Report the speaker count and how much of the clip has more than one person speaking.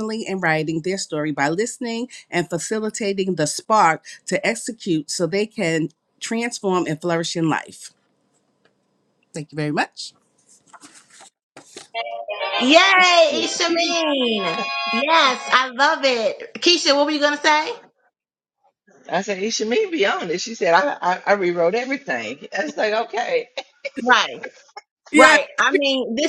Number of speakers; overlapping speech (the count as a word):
three, about 3%